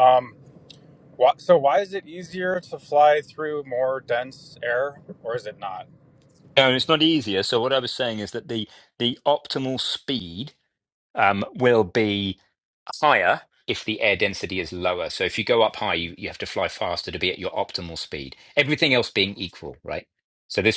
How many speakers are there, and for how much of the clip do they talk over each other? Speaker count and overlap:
2, no overlap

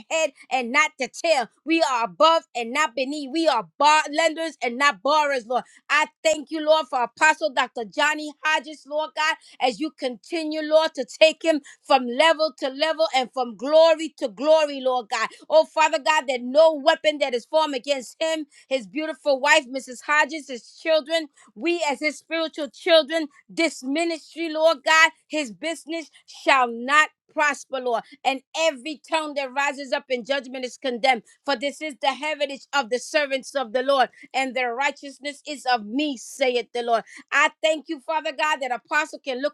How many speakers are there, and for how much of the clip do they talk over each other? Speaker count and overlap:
1, no overlap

